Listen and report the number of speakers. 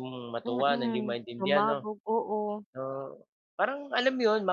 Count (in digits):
2